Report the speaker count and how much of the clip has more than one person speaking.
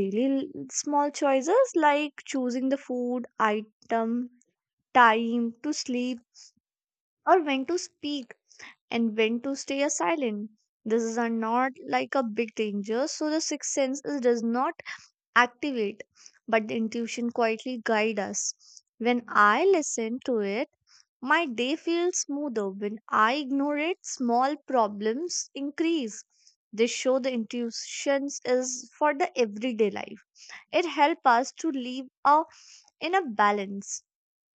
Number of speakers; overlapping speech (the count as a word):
one, no overlap